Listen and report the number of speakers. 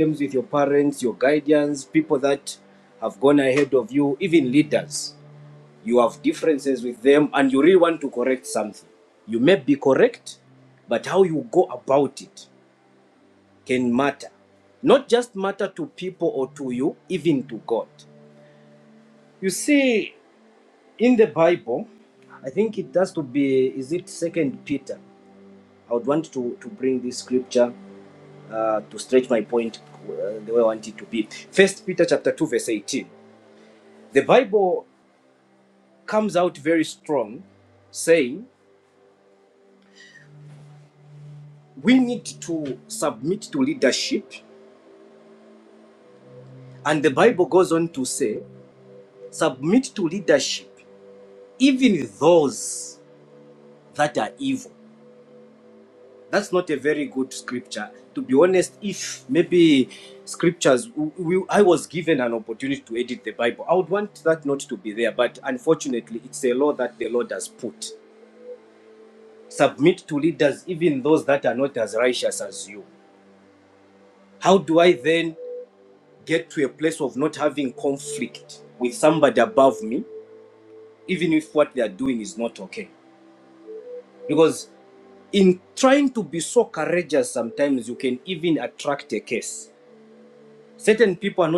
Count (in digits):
1